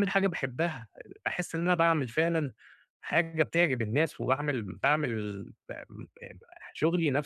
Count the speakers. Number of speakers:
1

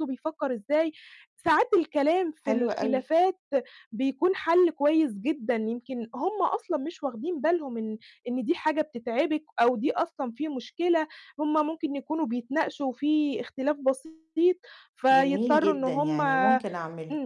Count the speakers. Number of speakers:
2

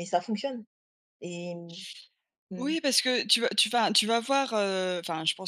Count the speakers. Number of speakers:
2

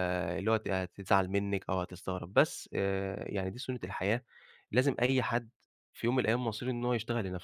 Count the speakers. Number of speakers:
1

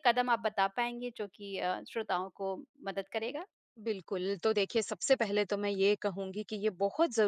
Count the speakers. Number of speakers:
2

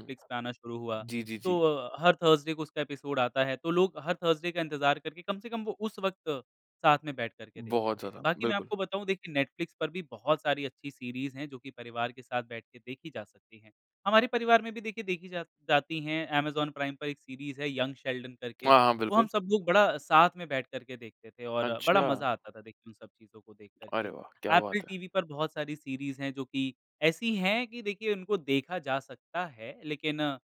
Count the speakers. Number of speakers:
2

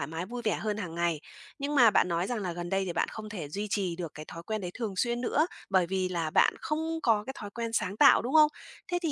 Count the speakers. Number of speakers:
1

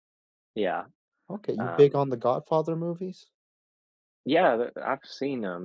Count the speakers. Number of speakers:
2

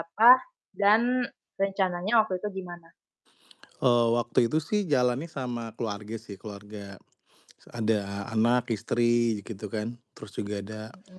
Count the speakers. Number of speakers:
2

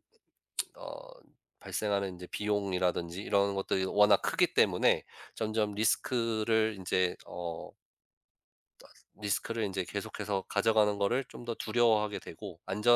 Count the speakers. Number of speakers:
1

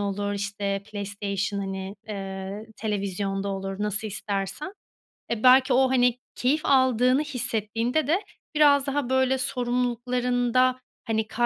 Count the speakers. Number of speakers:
1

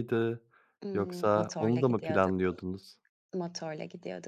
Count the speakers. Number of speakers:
2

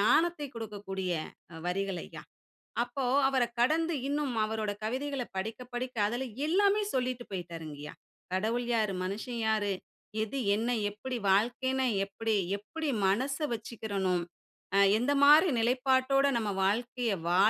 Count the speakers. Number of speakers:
1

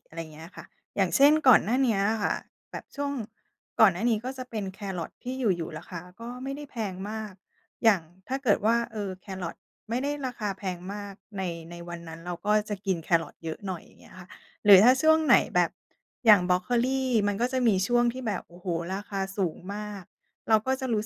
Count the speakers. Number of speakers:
1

